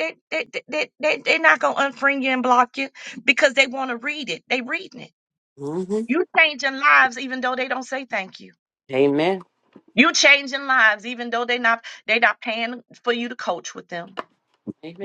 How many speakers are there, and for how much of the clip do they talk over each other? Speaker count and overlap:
2, under 1%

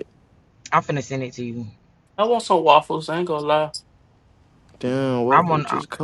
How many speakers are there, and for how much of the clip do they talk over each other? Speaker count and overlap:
3, about 9%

